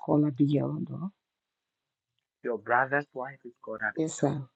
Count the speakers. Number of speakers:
2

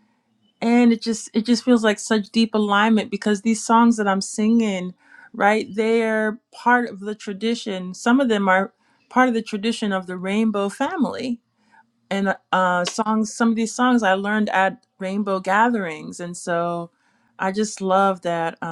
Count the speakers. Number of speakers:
1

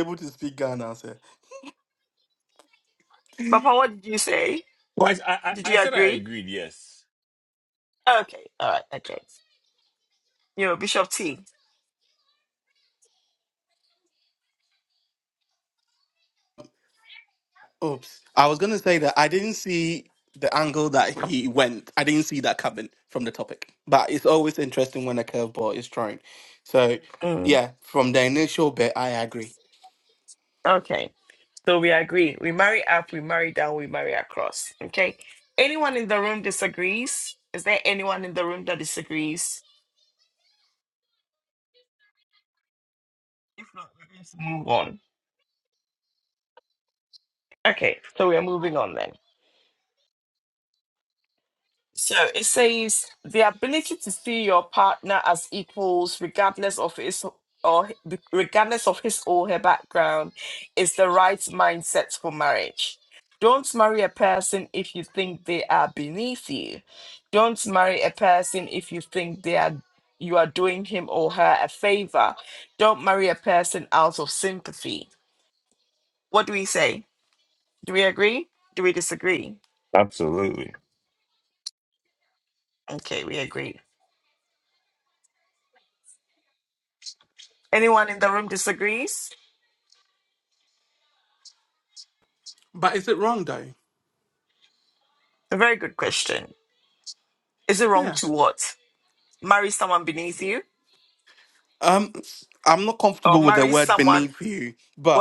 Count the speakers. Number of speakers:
3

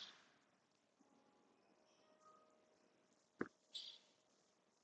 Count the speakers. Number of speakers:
0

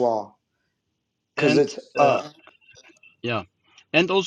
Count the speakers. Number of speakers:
2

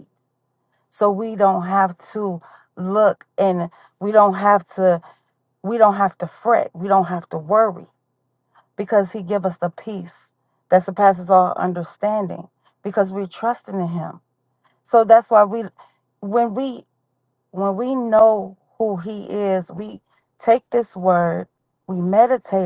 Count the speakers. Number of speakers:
1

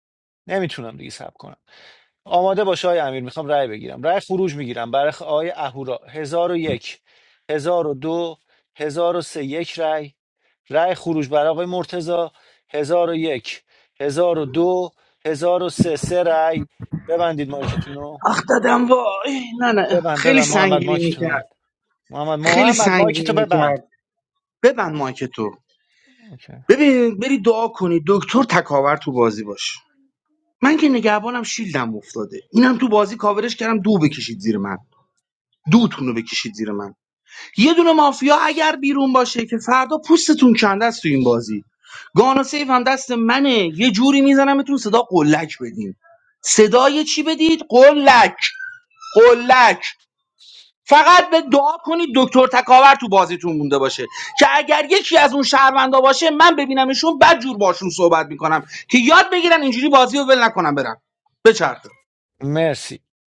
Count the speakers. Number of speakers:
2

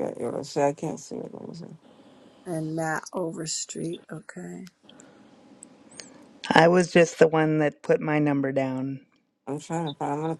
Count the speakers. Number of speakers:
3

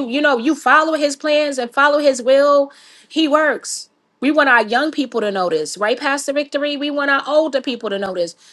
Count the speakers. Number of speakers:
1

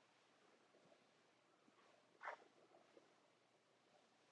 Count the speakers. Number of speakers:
0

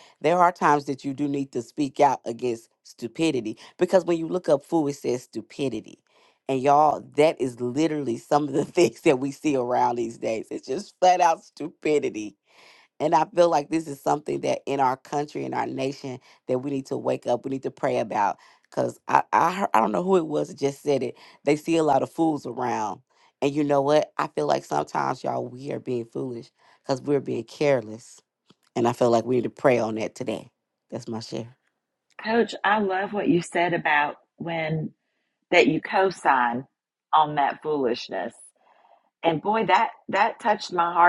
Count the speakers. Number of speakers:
2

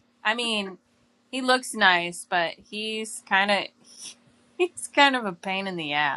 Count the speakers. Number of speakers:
1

